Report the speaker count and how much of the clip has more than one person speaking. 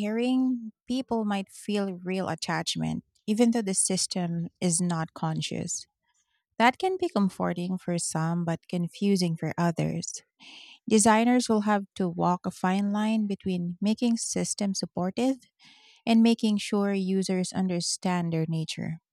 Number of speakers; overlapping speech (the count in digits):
1, no overlap